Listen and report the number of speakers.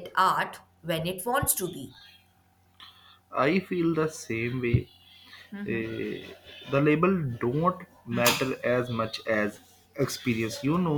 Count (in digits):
2